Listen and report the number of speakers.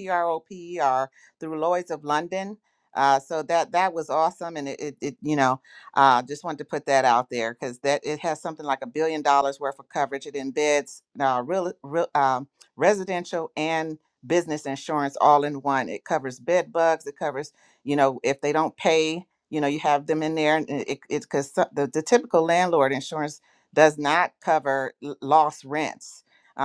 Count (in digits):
1